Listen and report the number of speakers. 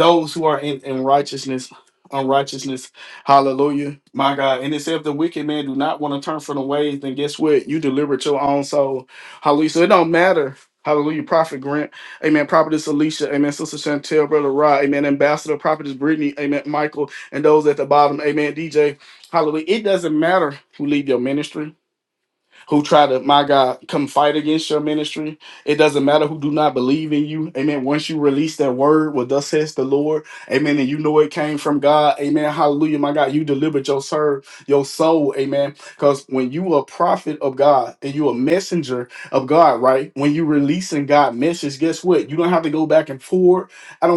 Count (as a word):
one